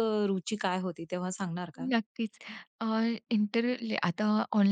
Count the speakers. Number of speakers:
2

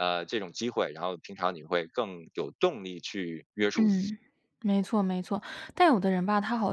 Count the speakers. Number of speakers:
2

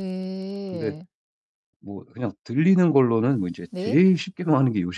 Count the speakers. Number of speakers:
2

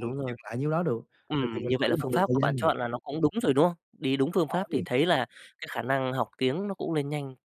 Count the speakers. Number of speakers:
2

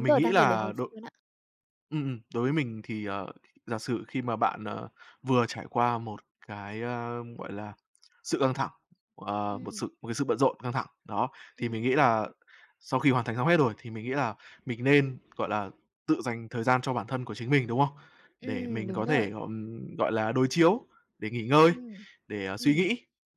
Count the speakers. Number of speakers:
2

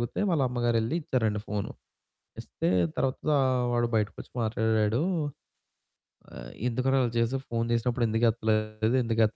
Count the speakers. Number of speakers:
1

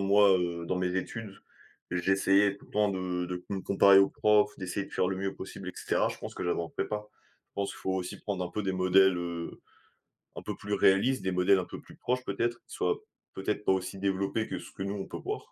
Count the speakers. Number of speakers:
1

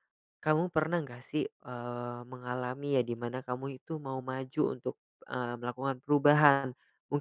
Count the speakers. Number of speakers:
1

